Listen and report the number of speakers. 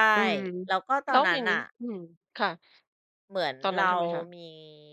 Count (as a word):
two